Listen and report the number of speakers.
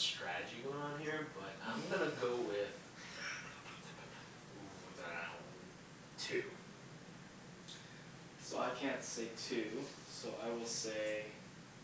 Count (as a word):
two